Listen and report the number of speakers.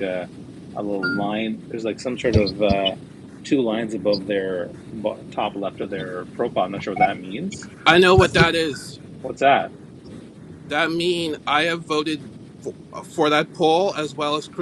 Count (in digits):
2